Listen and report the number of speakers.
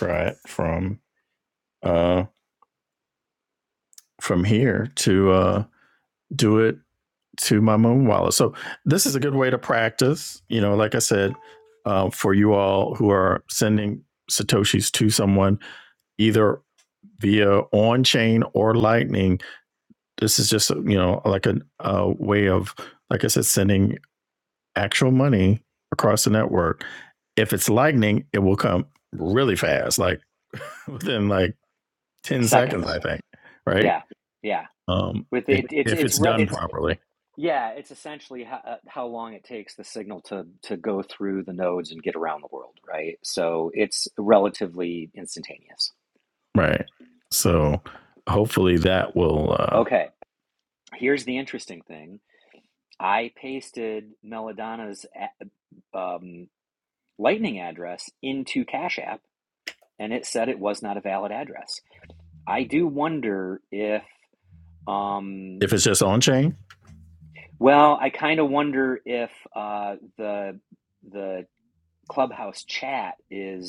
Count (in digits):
2